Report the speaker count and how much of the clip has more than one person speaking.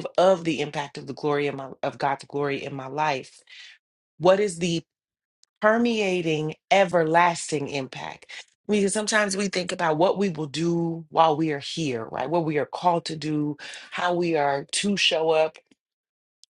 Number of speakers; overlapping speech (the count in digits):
1, no overlap